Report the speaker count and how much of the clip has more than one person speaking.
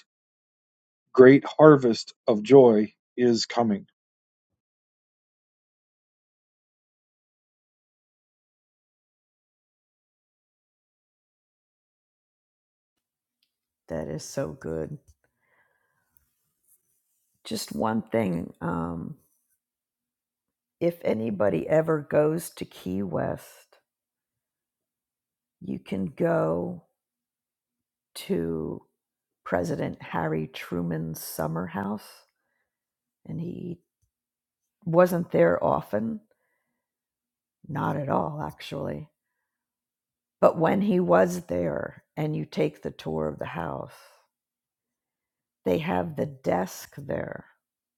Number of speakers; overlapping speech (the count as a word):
two, no overlap